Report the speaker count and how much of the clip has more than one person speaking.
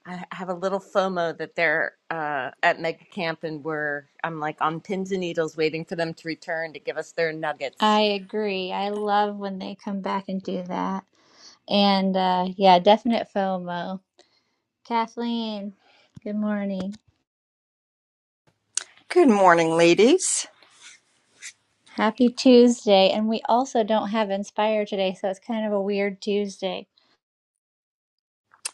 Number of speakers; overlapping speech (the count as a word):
three, no overlap